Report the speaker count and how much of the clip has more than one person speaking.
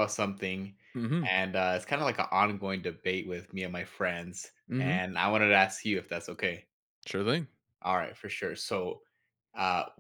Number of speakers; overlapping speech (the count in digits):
2, about 3%